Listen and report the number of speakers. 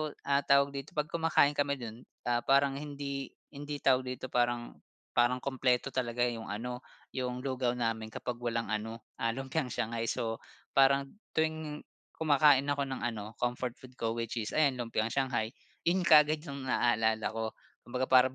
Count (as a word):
one